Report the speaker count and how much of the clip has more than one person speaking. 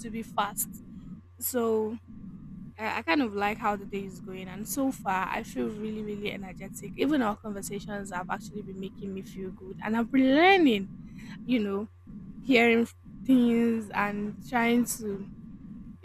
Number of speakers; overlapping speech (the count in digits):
1, no overlap